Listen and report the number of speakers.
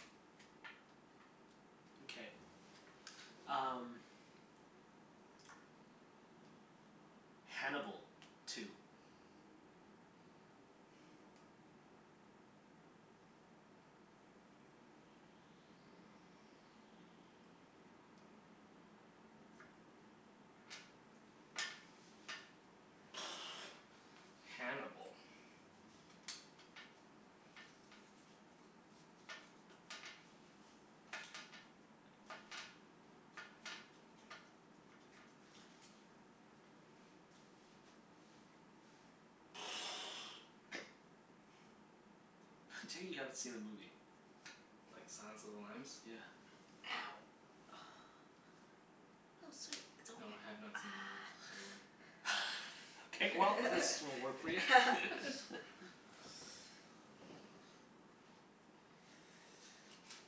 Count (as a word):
three